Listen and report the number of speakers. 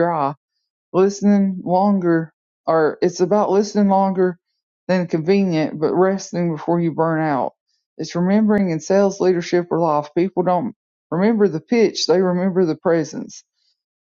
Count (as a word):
one